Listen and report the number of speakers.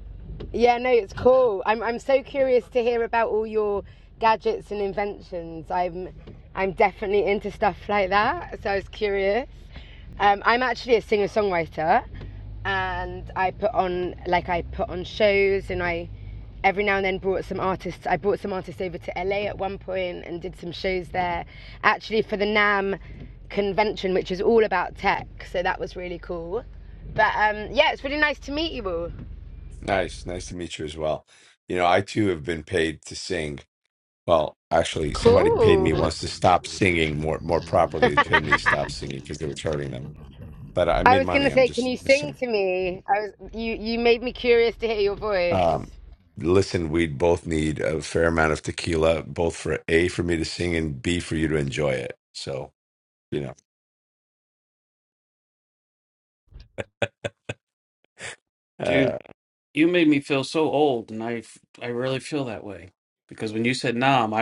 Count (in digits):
3